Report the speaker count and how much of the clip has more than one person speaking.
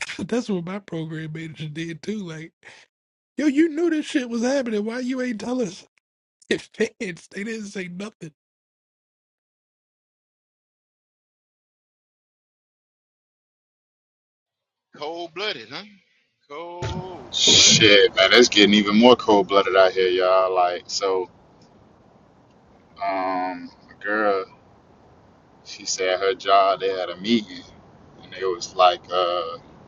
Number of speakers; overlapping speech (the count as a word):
three, about 2%